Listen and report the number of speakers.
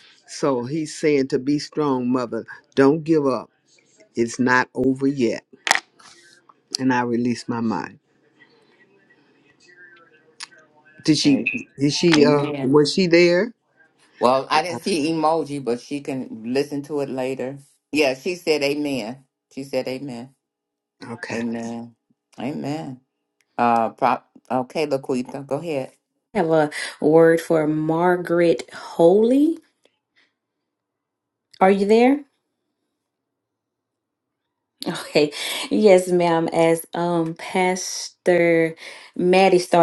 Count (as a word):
three